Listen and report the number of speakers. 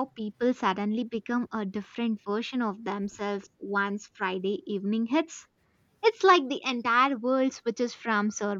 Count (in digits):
1